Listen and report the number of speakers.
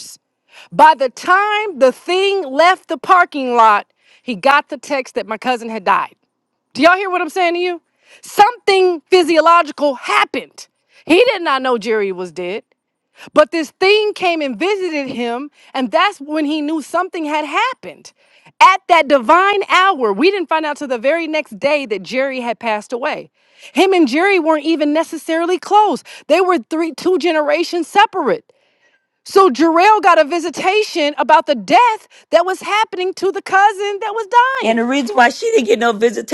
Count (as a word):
two